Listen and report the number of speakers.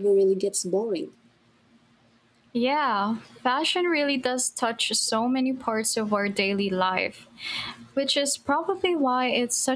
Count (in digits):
2